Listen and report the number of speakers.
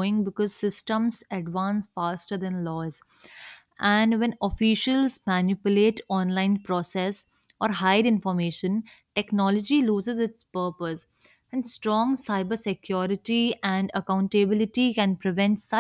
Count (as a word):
one